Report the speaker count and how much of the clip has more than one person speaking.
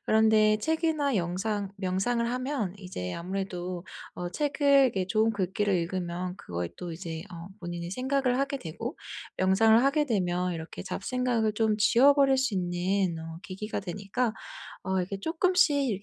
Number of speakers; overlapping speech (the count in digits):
1, no overlap